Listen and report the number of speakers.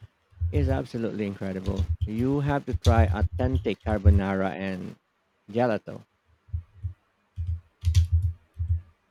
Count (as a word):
one